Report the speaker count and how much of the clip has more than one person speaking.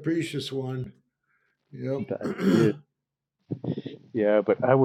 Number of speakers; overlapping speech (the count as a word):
two, no overlap